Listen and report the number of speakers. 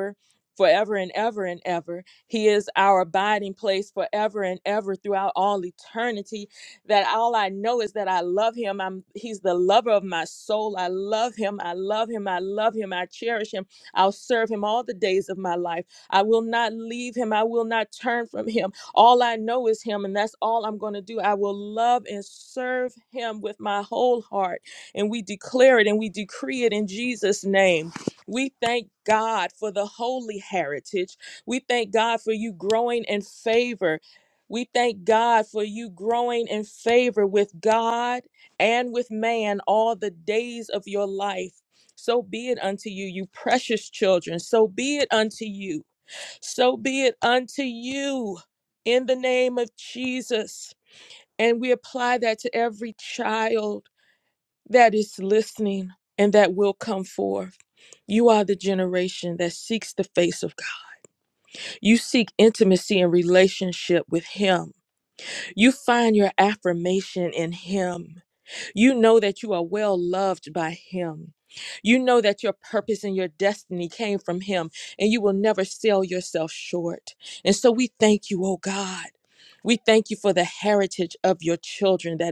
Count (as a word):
one